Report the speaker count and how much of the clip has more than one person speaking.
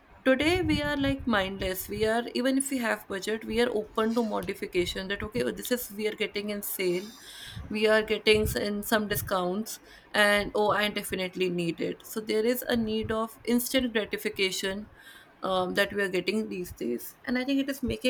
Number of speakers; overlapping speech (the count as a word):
one, no overlap